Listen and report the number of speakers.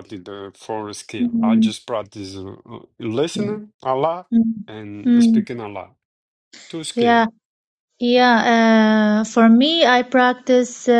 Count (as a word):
two